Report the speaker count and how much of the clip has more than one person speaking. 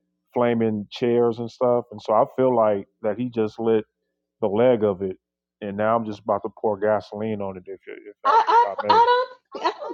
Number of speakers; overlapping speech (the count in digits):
2, about 8%